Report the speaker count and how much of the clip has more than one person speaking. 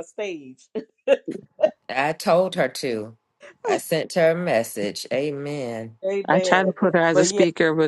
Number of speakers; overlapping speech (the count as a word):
three, about 10%